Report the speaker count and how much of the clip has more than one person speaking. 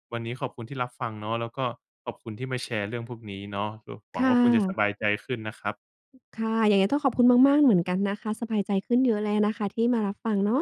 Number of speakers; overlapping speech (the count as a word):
two, about 6%